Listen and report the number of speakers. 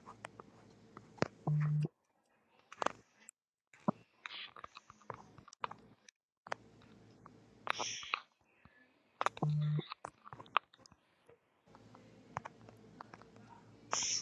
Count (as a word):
zero